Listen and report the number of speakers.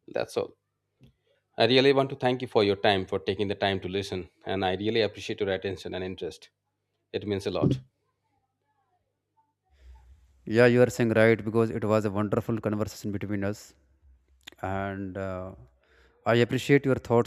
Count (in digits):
2